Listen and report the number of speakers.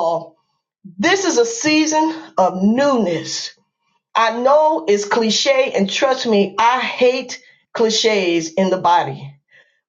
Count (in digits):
1